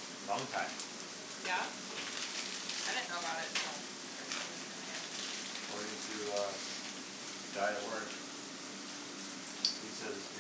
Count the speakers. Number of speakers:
2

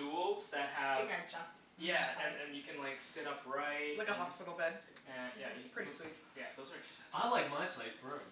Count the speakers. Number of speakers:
4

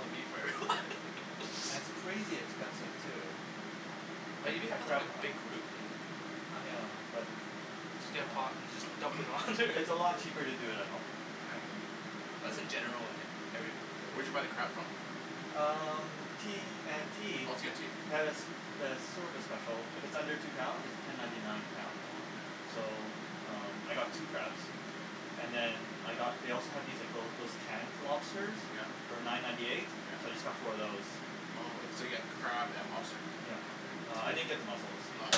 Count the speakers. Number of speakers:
3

